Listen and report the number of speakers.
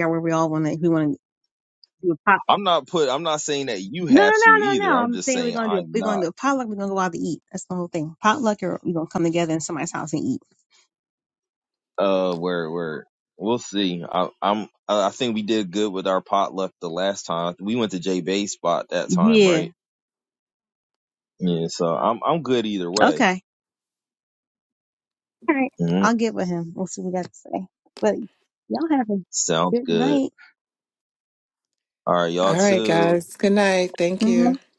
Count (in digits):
3